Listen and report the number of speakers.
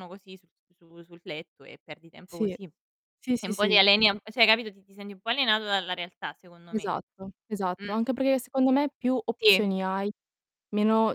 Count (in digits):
2